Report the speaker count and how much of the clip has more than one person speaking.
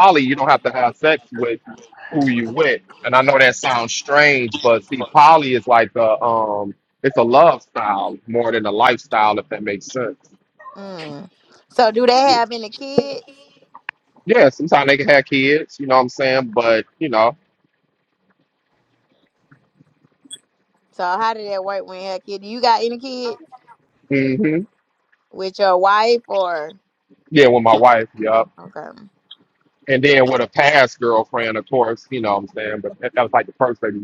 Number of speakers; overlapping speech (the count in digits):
2, no overlap